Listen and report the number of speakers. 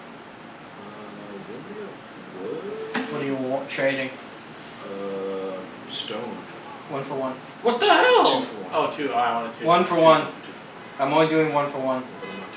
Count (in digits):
3